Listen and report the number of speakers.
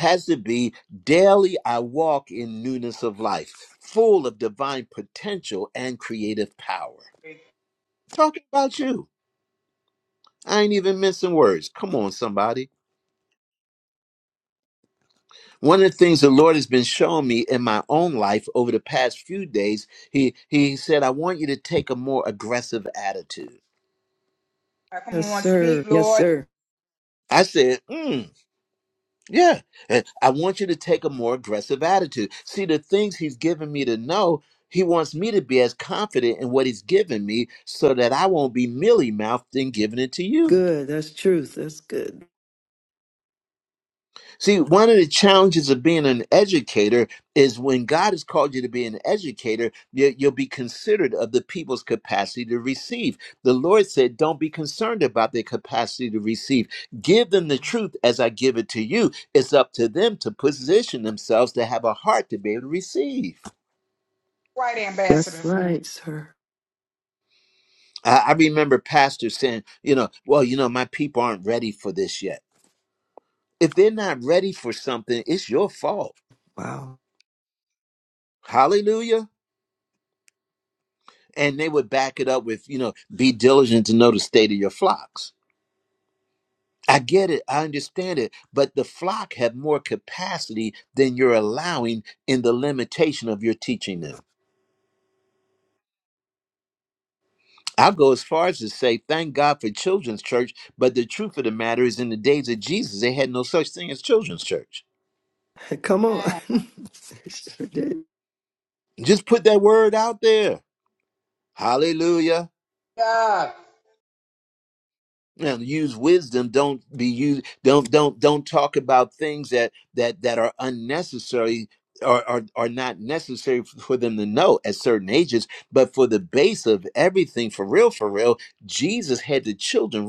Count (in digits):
3